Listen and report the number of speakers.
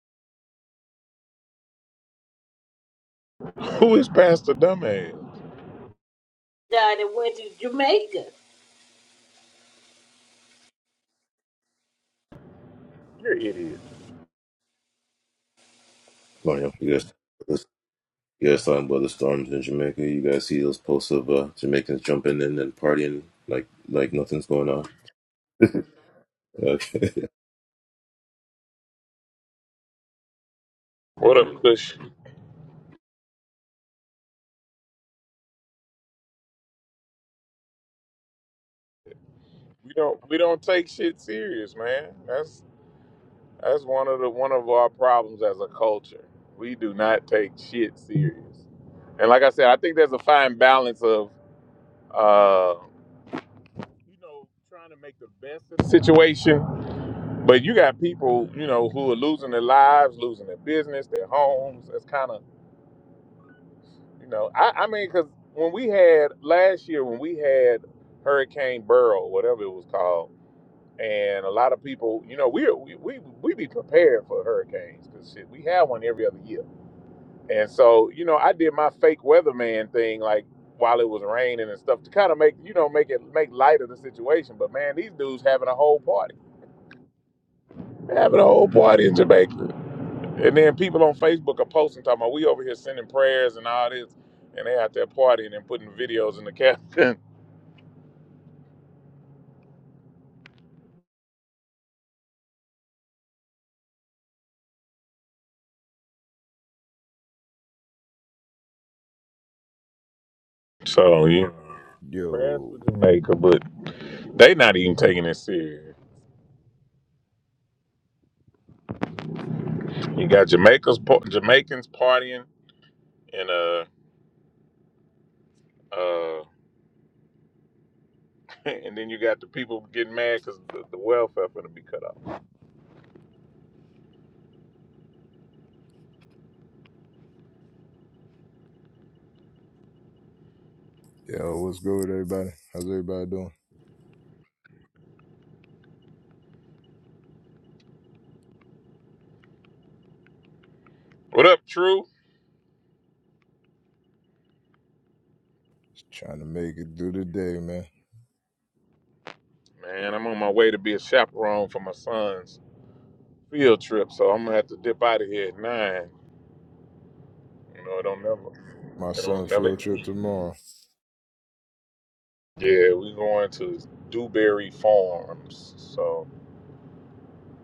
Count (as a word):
four